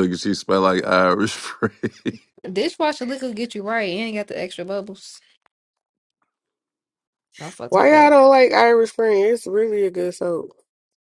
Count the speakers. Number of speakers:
3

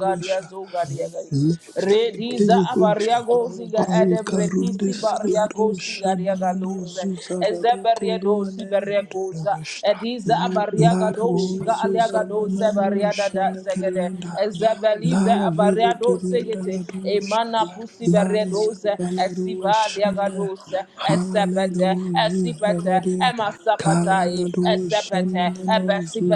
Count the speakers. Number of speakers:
2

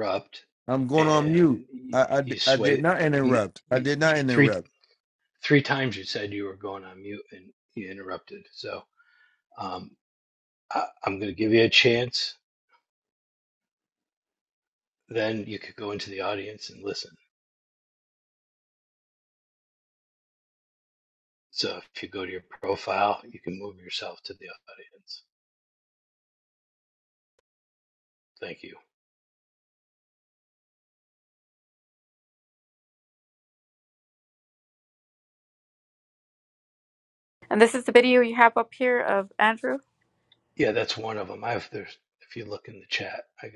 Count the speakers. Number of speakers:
3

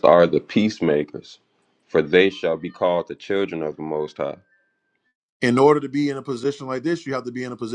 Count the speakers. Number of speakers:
2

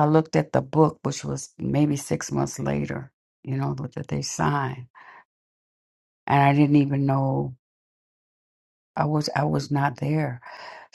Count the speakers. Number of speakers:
1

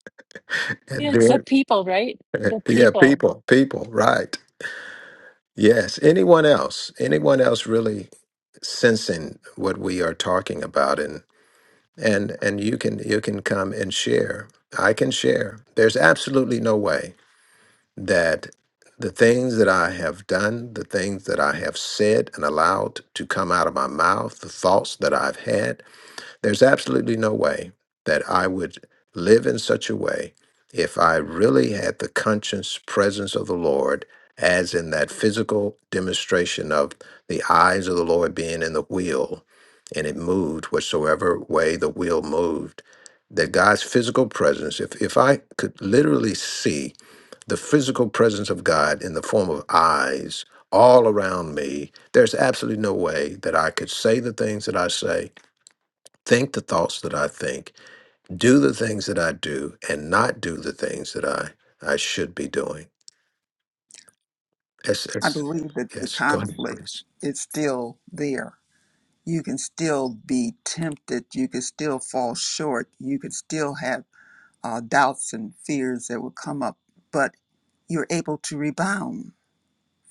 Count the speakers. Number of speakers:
3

